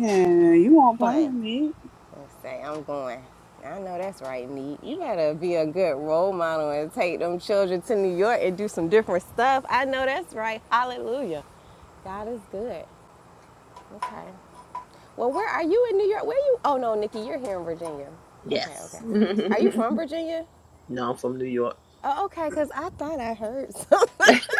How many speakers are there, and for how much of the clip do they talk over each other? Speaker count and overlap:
three, about 5%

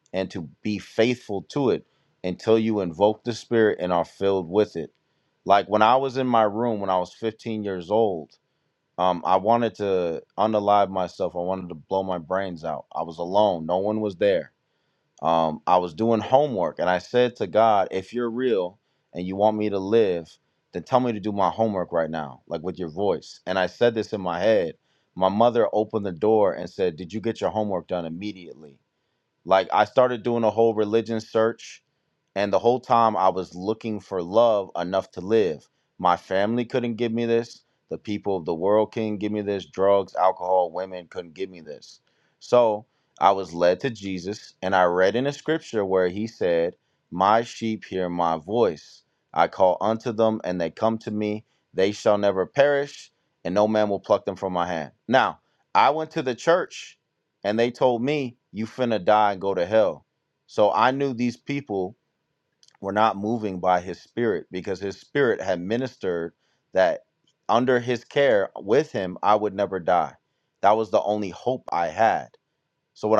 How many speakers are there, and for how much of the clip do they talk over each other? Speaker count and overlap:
one, no overlap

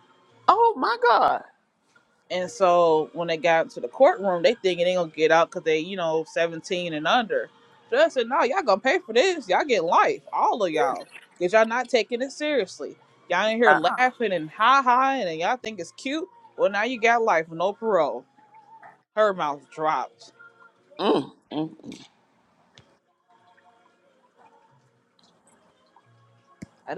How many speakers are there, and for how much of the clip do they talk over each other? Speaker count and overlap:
two, no overlap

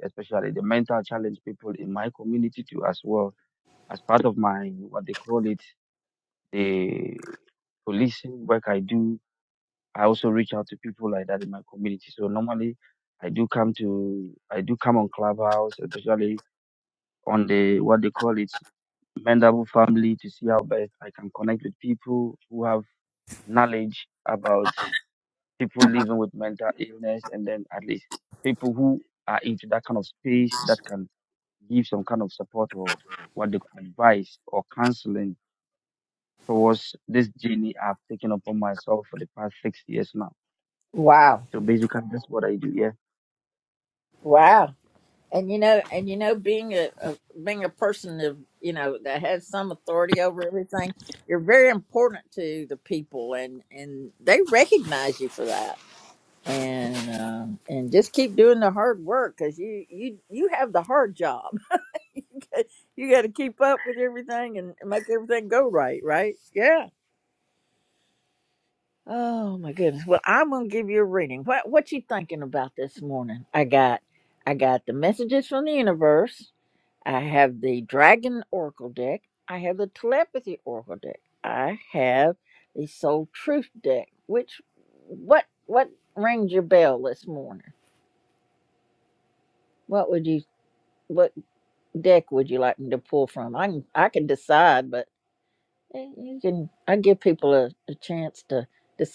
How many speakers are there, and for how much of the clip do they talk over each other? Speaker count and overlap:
two, no overlap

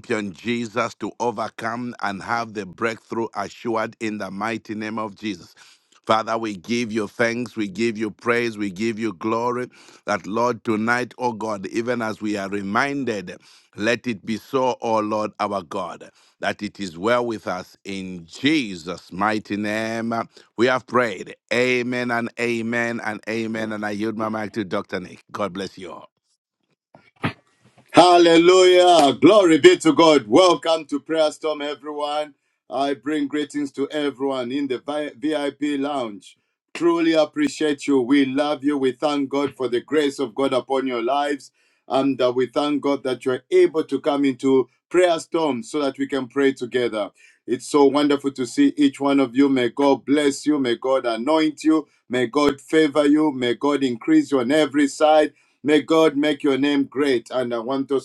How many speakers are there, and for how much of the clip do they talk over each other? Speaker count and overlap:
two, no overlap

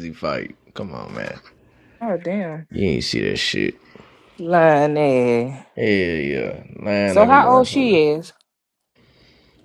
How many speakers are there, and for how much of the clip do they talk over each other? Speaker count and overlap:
two, about 8%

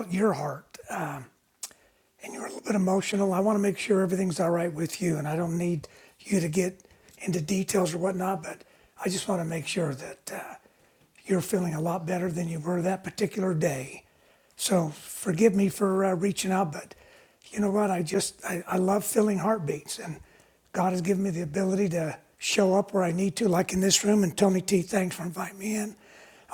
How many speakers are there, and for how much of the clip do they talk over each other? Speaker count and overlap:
one, no overlap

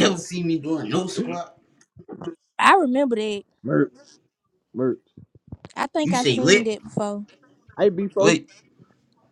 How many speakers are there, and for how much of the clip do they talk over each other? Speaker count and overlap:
three, about 8%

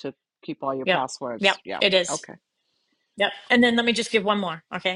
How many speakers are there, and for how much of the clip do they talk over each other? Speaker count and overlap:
two, about 19%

